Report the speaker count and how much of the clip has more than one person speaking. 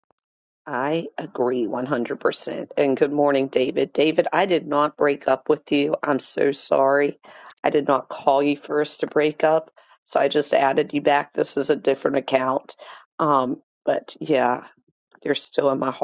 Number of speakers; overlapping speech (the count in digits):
1, no overlap